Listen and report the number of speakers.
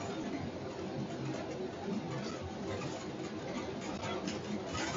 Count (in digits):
0